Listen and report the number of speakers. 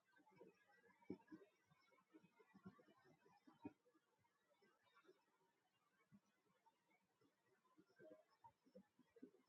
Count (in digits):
0